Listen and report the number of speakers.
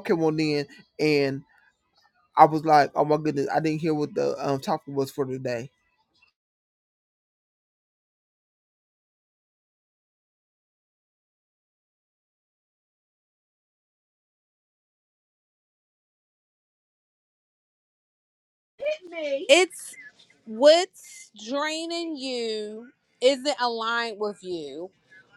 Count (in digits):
2